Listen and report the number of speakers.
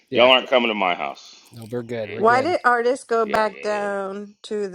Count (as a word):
three